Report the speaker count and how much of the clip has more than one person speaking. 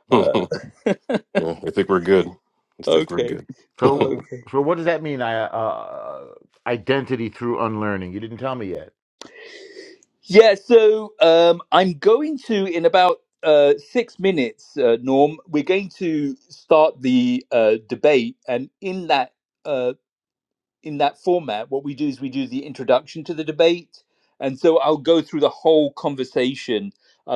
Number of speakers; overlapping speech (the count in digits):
3, about 4%